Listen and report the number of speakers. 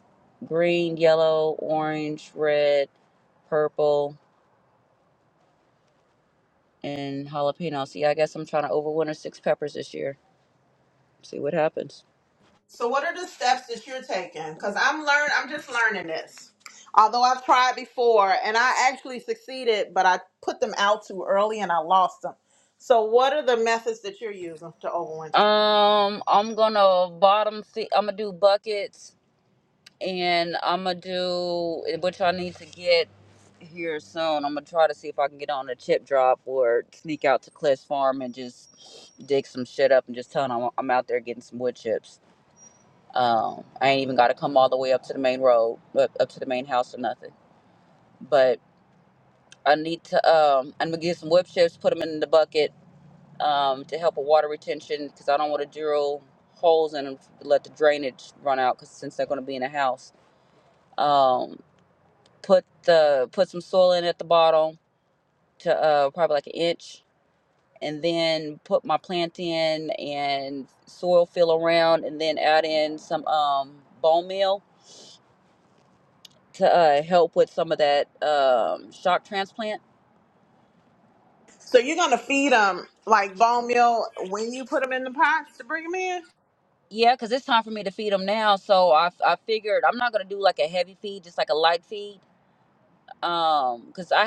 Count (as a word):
two